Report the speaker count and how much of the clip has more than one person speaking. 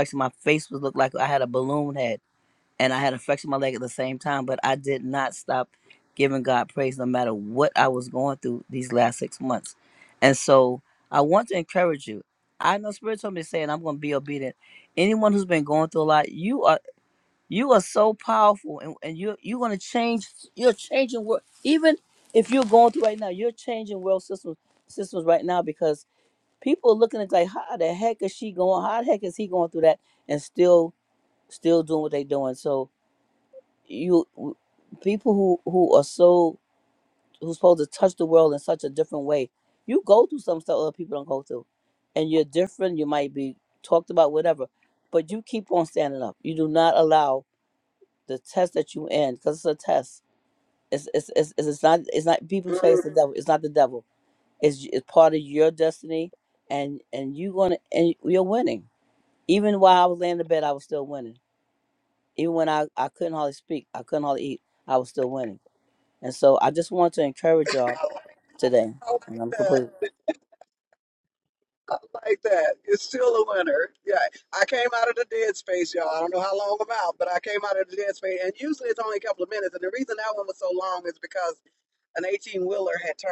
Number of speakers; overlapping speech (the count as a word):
two, about 1%